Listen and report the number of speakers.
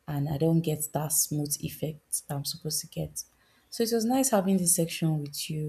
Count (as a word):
one